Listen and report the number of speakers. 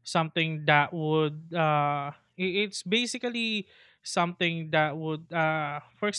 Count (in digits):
1